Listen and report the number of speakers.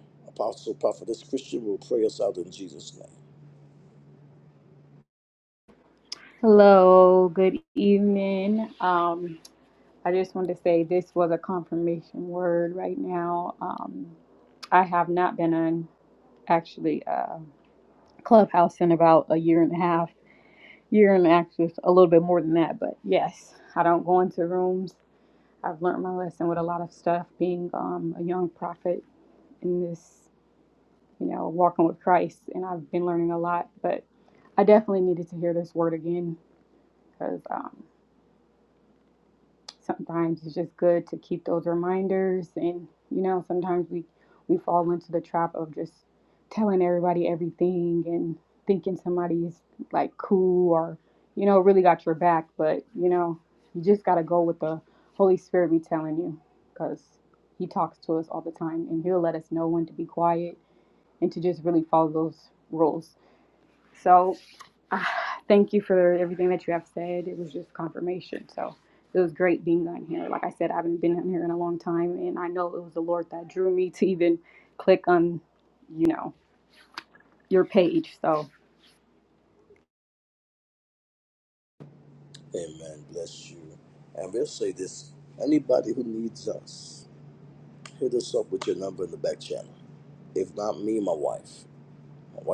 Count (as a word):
two